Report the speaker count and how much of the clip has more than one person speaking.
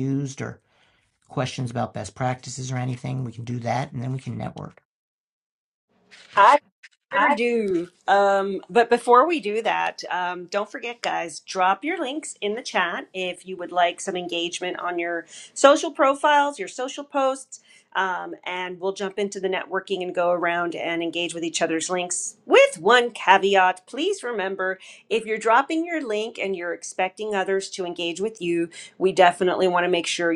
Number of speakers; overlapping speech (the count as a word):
two, about 1%